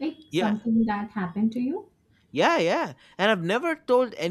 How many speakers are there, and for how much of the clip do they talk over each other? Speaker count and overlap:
2, about 6%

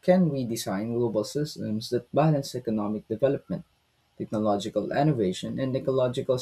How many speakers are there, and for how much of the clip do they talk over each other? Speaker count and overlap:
1, no overlap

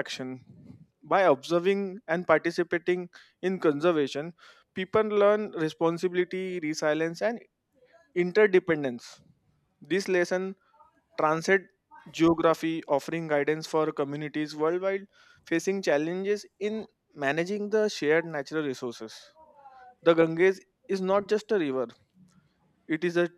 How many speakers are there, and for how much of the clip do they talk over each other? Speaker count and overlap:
1, no overlap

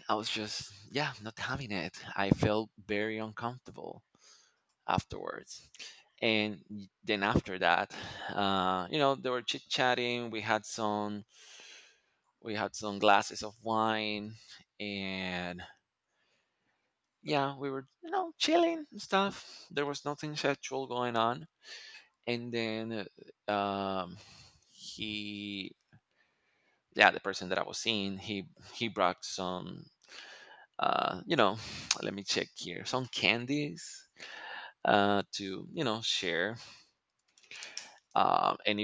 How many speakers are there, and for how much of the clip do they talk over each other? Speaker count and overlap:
1, no overlap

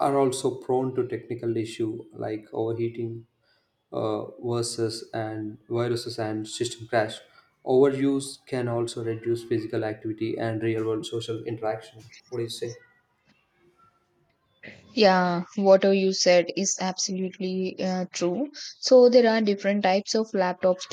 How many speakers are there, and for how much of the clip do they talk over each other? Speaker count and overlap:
2, no overlap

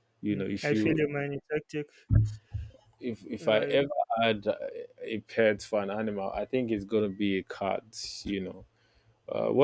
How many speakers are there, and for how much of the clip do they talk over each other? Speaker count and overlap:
2, about 11%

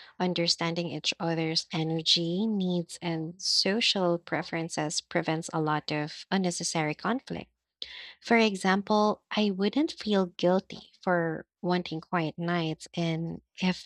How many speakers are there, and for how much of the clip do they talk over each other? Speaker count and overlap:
1, no overlap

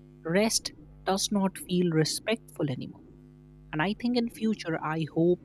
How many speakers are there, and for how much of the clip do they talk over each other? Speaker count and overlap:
1, no overlap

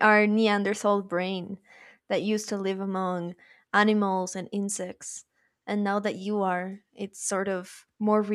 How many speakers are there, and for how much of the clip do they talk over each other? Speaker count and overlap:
1, no overlap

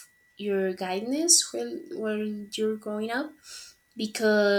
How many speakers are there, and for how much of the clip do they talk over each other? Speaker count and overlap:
1, no overlap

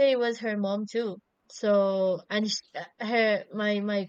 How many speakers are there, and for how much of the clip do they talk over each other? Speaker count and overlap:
1, no overlap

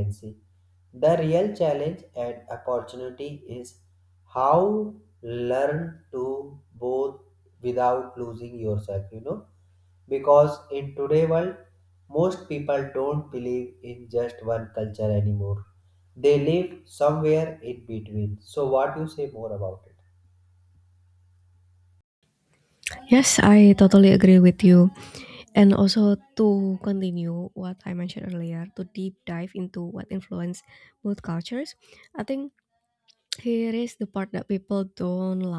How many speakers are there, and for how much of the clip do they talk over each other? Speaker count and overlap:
2, no overlap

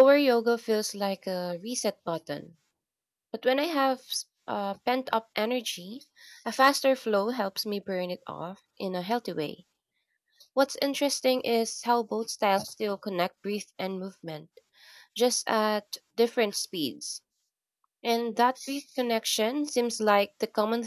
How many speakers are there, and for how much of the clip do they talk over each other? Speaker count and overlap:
1, no overlap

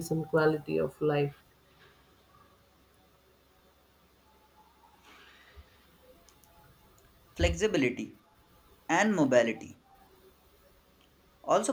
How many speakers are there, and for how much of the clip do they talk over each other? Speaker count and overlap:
2, no overlap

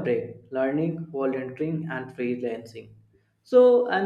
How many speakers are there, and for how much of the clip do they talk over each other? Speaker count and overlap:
1, no overlap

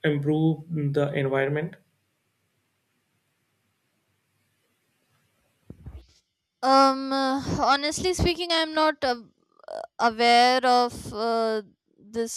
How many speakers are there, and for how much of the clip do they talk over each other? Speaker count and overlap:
2, no overlap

